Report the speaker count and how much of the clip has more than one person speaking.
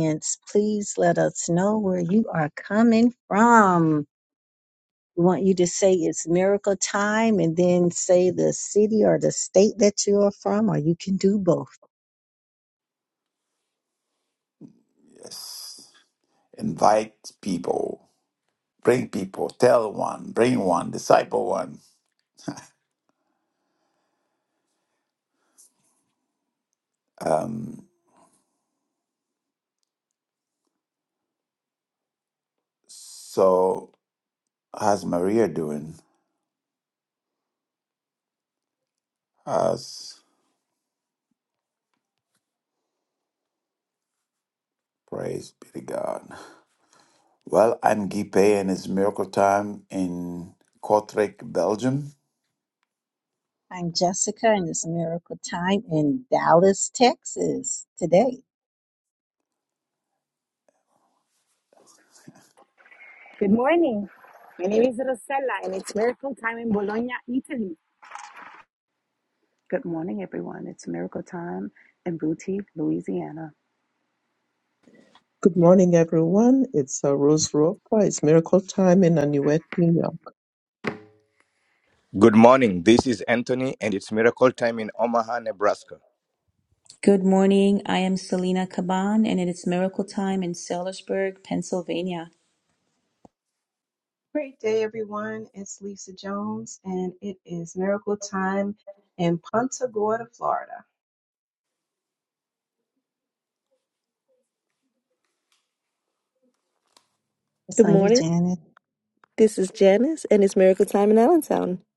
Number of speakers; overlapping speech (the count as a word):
nine, under 1%